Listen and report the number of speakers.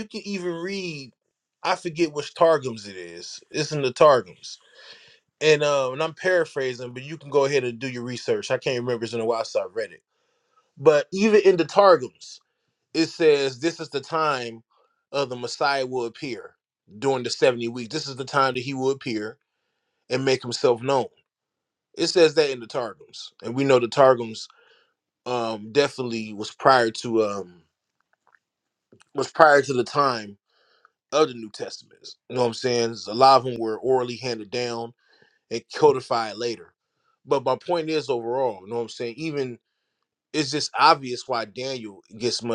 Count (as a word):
one